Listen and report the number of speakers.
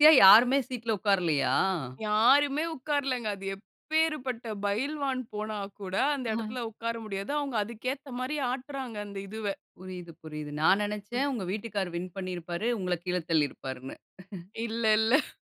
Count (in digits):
2